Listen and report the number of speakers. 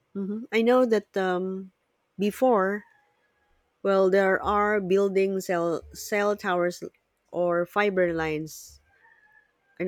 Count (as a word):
one